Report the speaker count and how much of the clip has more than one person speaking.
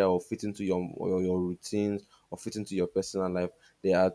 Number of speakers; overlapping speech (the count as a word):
one, no overlap